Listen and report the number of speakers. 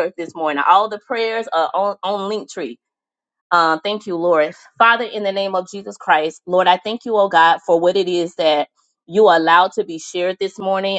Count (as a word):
one